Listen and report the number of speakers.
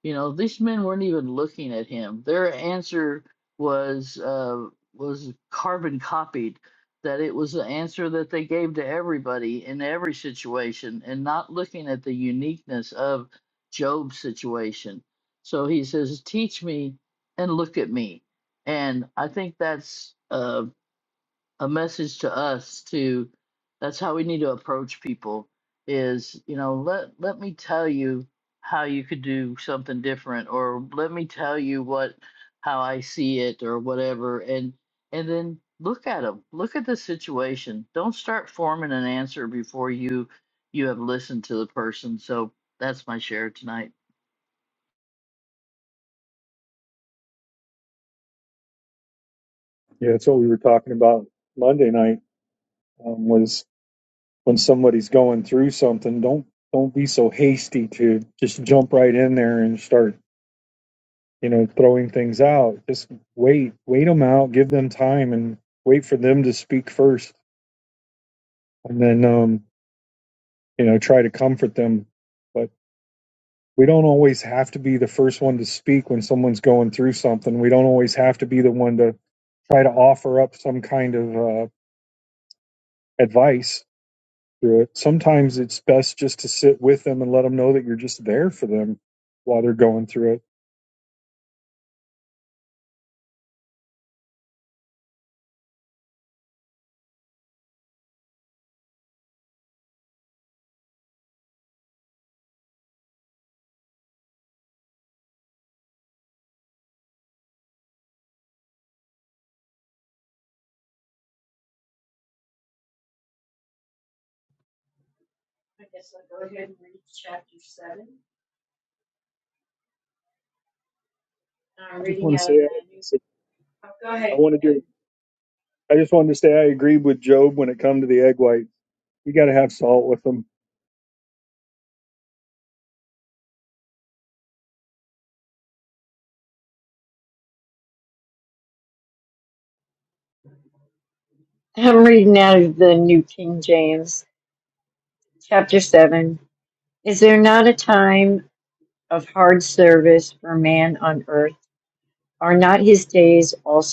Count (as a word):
three